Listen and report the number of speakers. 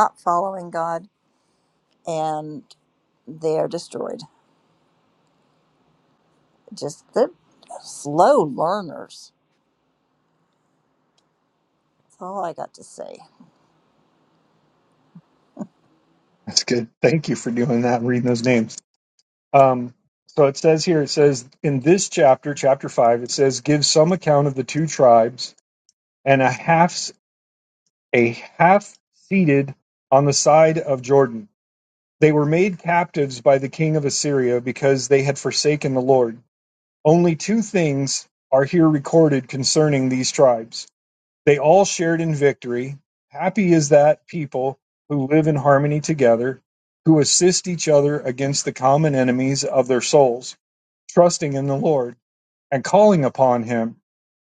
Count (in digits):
2